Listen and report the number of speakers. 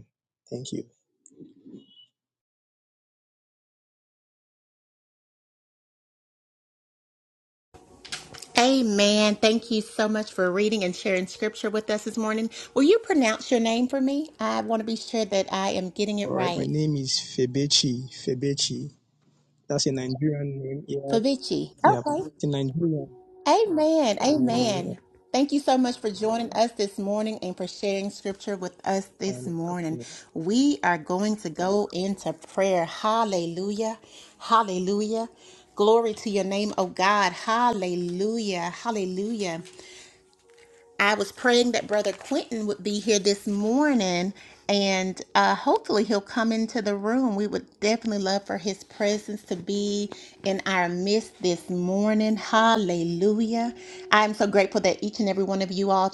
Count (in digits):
2